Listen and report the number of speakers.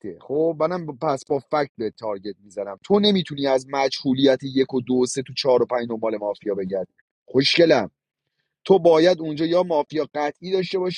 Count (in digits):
1